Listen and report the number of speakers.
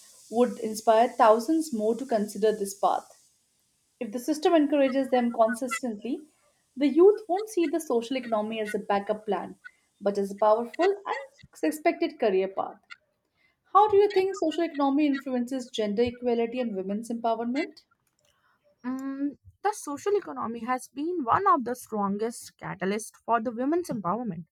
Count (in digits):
2